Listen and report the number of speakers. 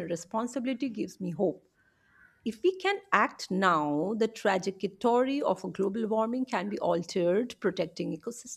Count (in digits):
1